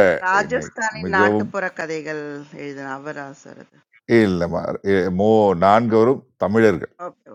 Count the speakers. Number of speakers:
2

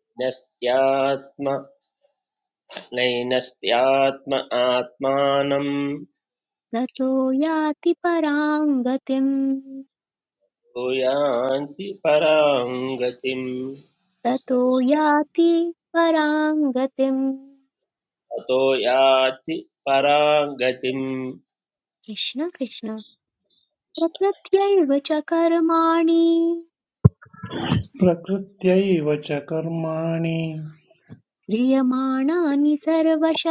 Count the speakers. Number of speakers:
3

